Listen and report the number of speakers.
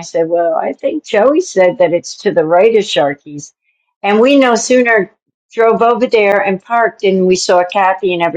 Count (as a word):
one